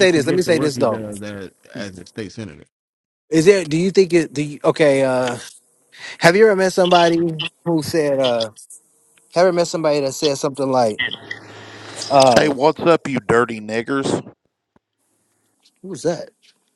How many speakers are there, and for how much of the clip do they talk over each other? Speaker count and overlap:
3, about 8%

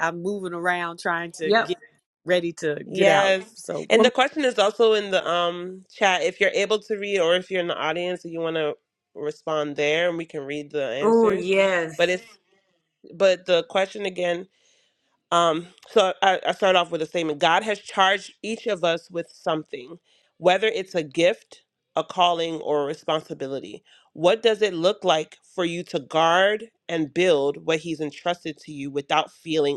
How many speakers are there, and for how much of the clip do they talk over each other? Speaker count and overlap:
3, about 5%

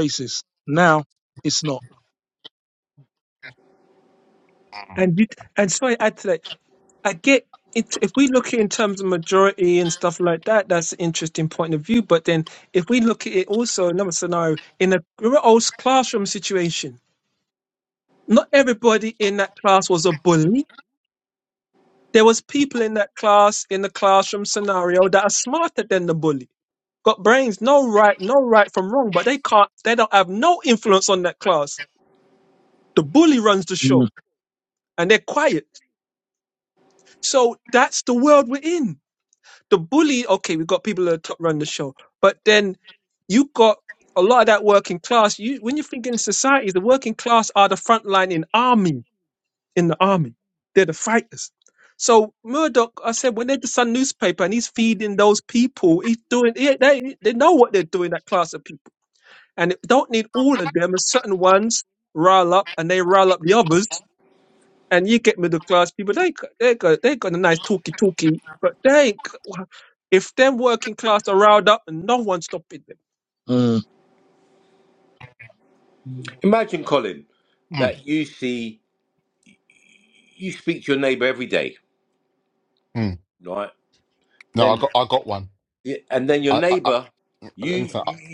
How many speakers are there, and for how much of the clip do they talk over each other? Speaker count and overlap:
4, about 2%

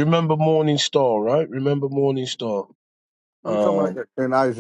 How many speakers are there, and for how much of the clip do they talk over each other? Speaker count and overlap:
2, about 12%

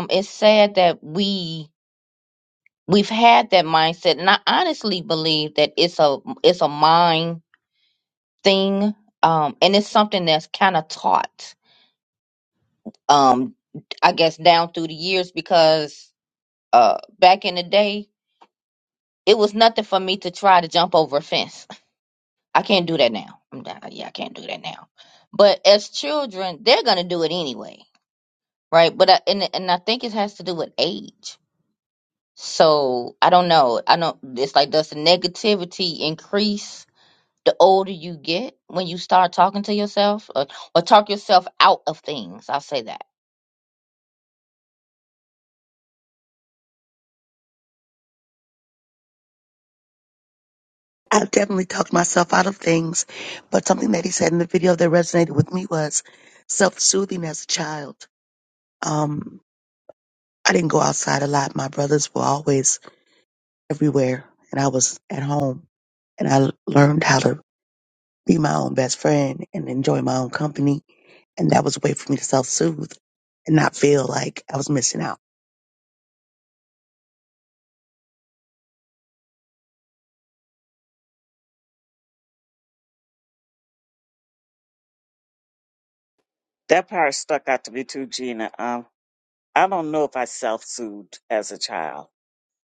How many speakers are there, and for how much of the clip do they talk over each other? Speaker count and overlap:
3, no overlap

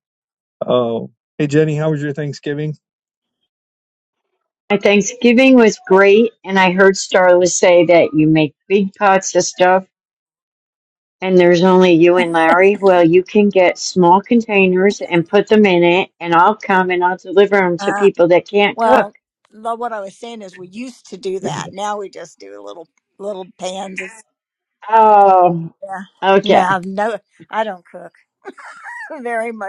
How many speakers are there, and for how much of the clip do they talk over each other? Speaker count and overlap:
3, about 4%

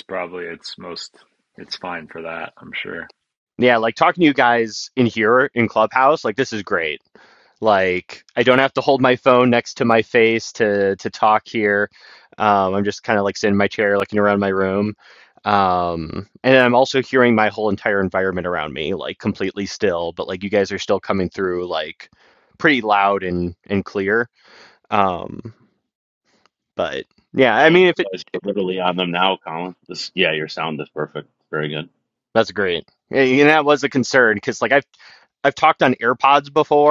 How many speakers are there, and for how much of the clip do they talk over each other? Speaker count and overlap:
3, about 1%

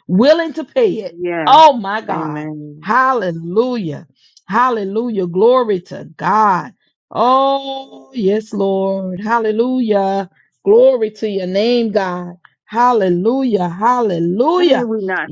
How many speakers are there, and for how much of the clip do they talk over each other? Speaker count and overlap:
2, about 5%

